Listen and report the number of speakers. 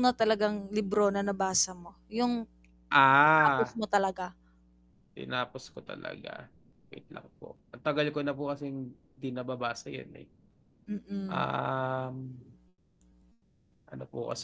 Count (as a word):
two